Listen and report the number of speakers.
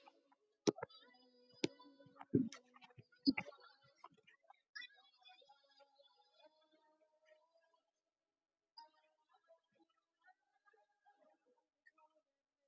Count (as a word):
zero